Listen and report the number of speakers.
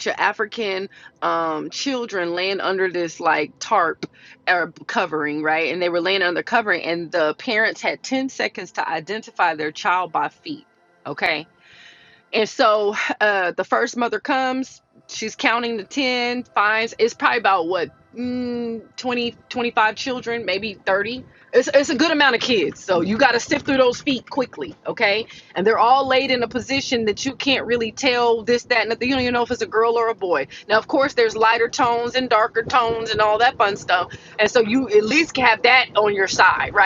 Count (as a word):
one